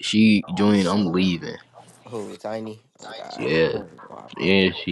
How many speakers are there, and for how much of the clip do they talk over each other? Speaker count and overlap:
two, about 14%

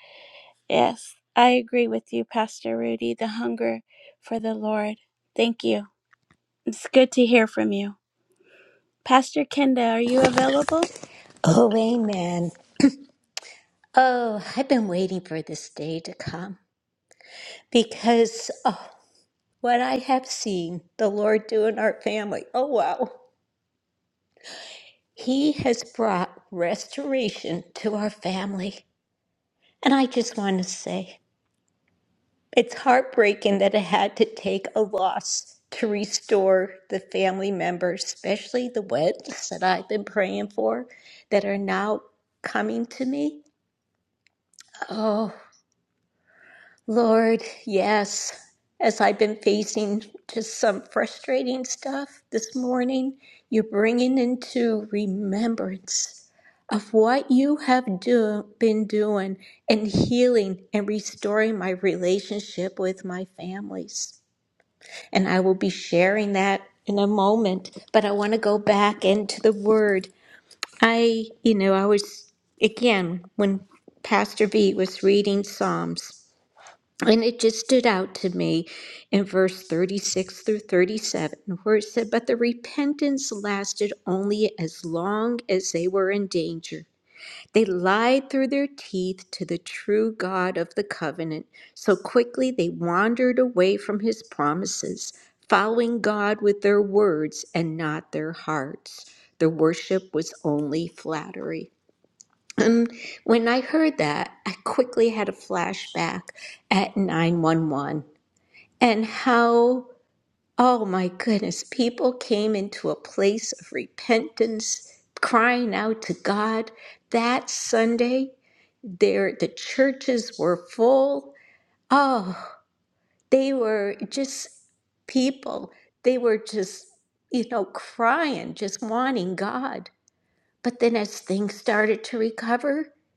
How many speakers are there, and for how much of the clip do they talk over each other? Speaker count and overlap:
two, no overlap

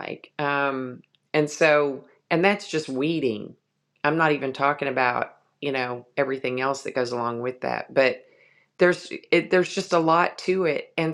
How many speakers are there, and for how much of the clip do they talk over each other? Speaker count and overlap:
one, no overlap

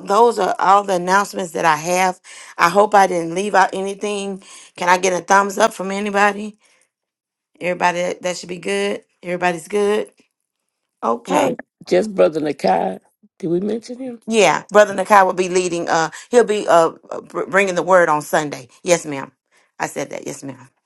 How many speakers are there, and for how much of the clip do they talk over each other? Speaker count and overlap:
two, about 1%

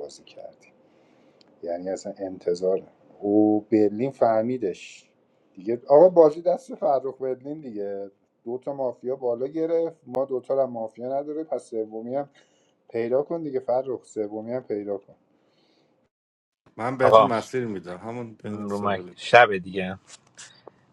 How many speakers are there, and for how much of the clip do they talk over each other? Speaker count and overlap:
three, about 5%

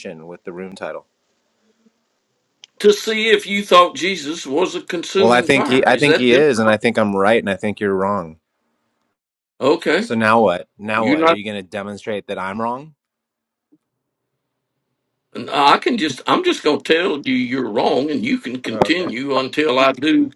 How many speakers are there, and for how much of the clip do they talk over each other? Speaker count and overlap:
two, about 12%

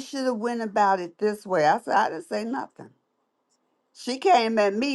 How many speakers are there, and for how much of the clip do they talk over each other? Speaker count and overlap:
one, no overlap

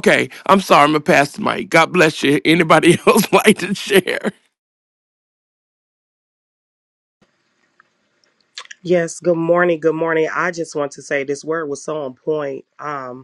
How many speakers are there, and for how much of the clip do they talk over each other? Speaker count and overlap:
two, no overlap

